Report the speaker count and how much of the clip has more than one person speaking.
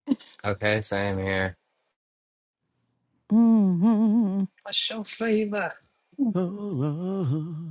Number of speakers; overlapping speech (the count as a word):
three, no overlap